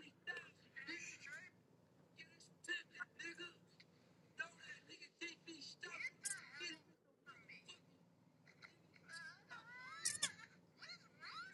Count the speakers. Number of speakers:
zero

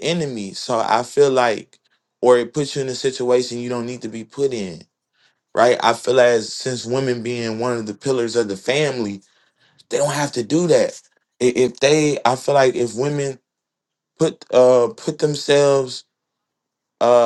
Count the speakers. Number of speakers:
one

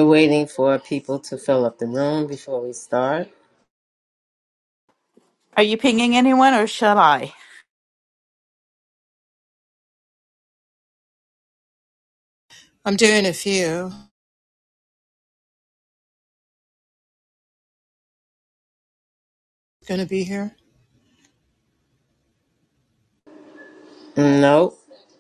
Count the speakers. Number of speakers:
three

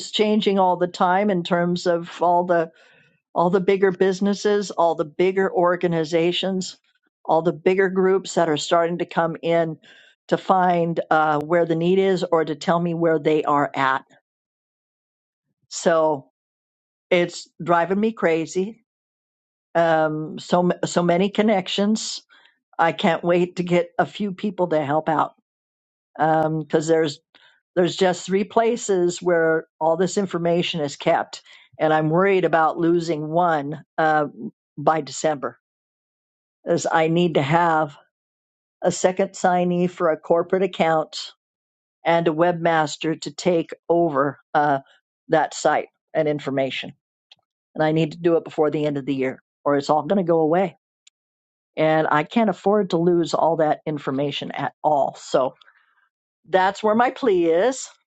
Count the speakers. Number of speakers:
one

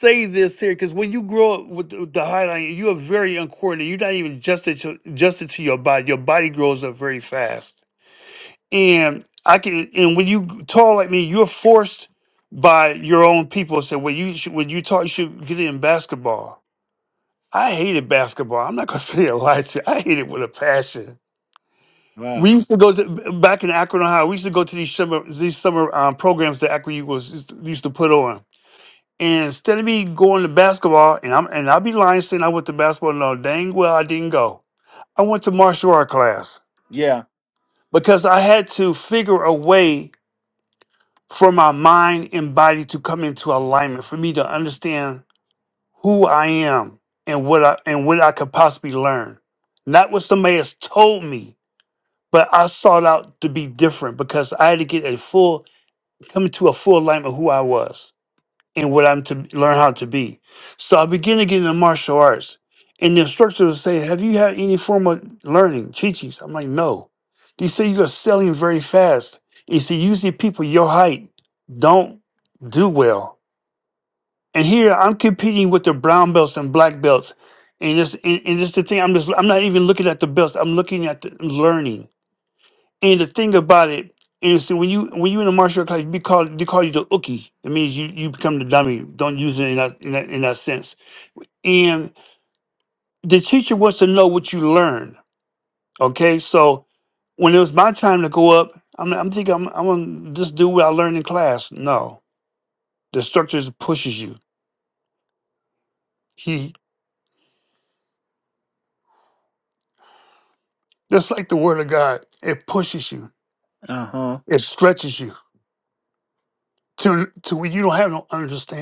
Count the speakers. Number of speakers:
two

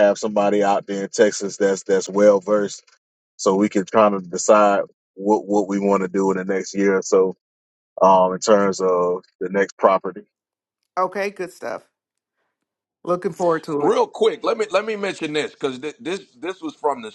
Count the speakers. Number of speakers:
three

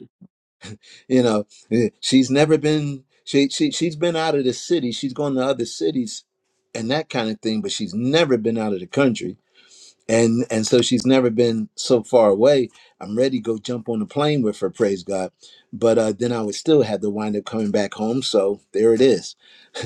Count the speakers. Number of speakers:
one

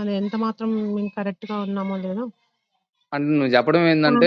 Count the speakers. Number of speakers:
two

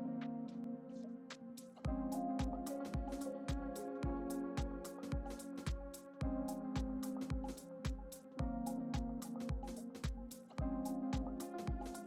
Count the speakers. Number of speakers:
zero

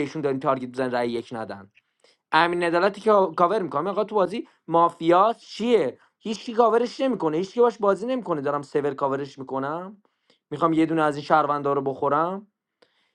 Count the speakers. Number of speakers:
one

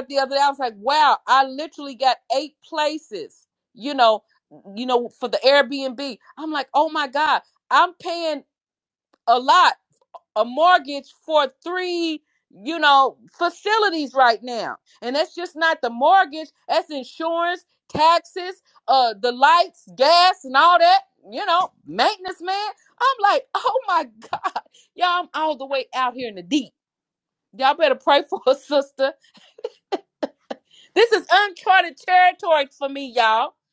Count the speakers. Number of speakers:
one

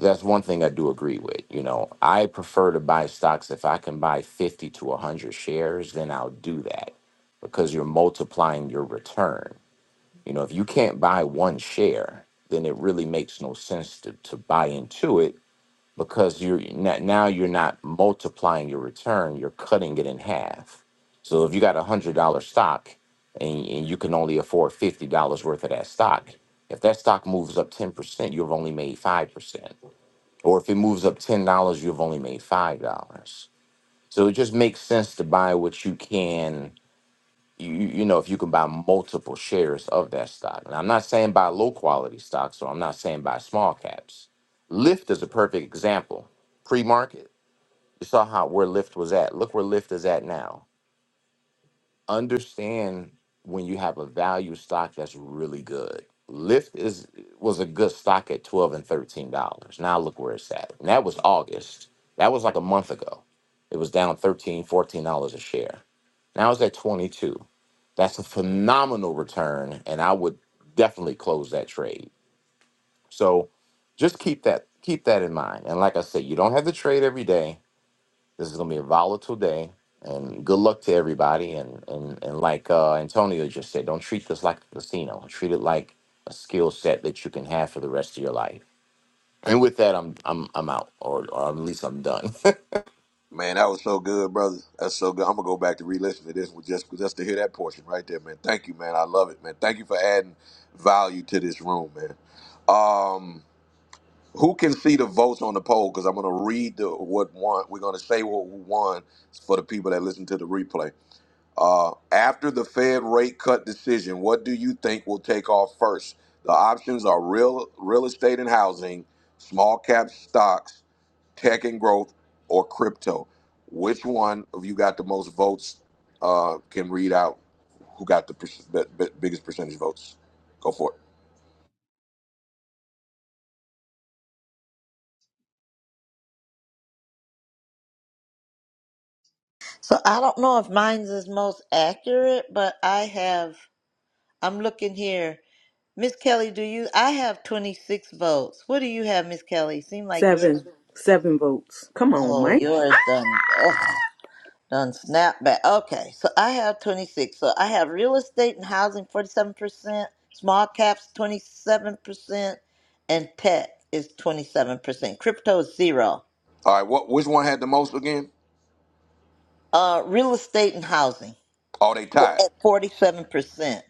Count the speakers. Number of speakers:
four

